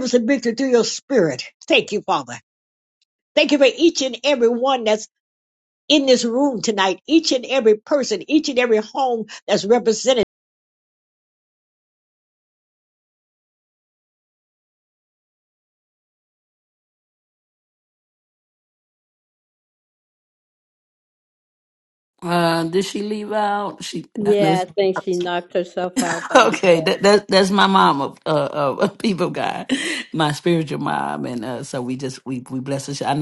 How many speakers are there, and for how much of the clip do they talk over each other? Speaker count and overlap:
3, about 3%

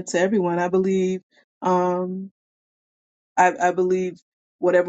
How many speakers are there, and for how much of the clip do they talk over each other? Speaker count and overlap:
1, no overlap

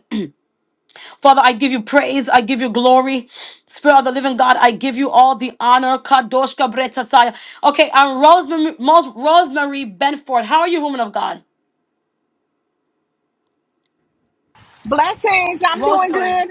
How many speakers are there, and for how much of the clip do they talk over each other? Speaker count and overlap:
2, about 4%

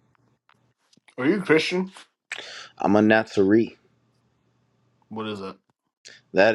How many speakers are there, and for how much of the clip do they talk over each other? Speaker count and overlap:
2, no overlap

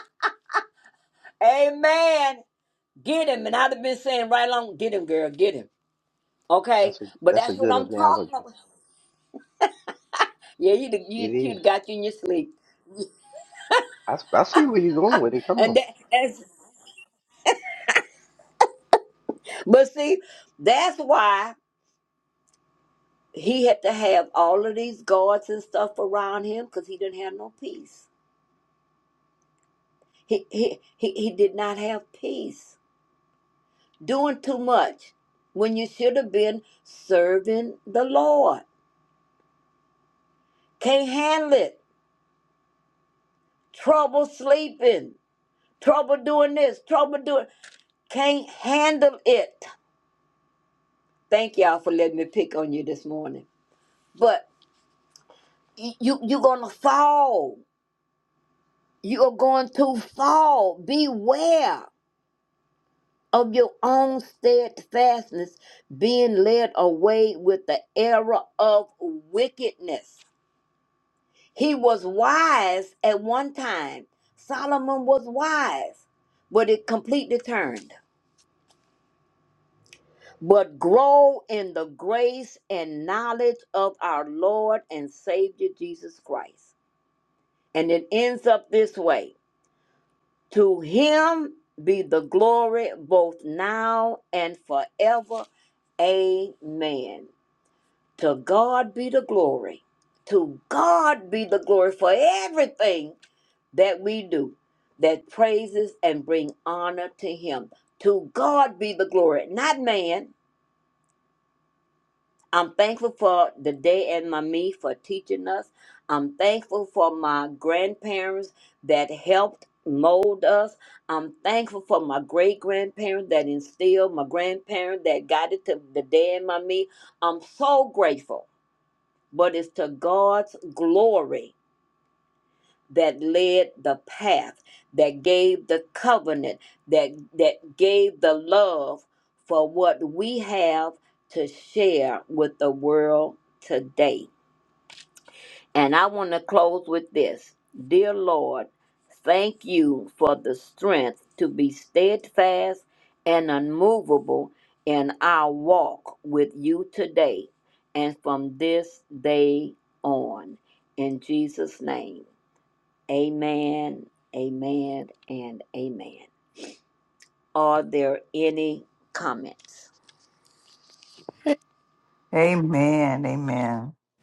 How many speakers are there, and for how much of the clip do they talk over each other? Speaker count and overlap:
3, about 1%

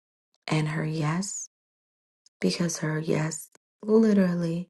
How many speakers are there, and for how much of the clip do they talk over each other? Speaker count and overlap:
1, no overlap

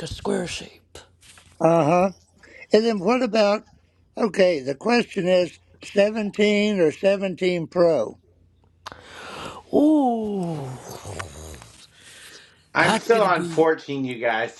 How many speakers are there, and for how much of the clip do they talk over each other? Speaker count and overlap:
3, about 6%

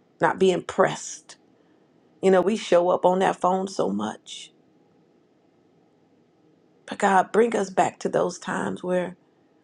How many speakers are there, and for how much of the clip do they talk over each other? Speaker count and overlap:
1, no overlap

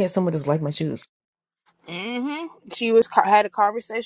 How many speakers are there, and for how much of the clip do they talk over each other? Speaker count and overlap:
2, no overlap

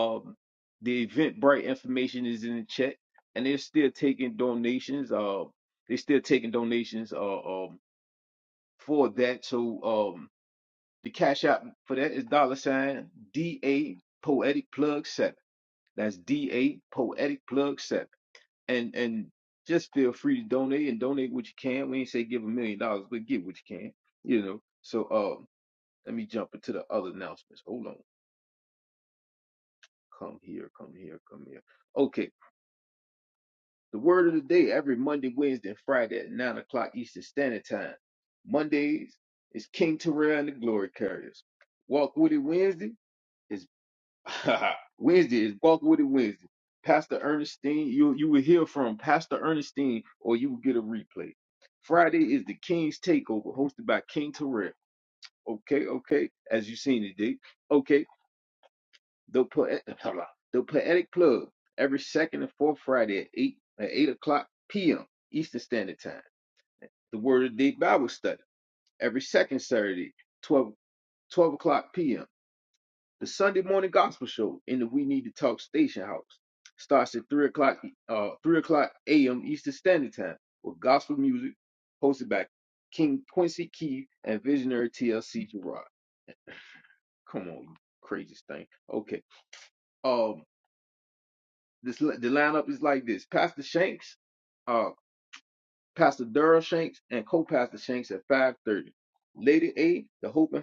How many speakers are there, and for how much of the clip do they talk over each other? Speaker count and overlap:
1, no overlap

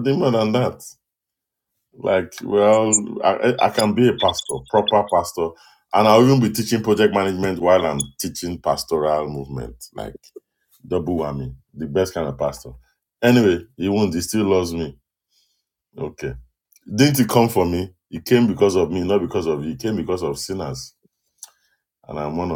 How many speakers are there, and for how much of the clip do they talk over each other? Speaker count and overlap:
1, no overlap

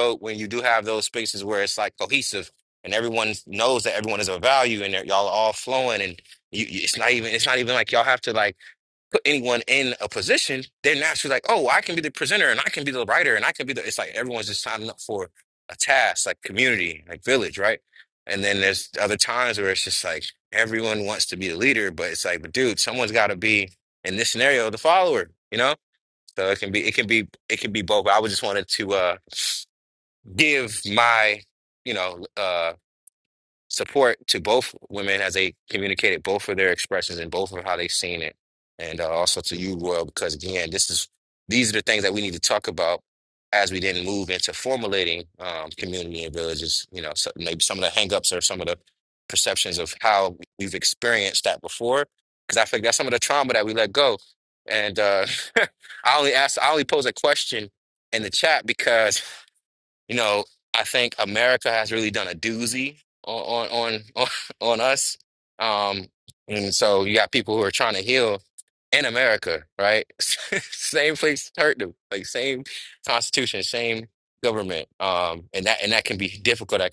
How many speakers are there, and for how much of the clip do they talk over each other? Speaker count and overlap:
1, no overlap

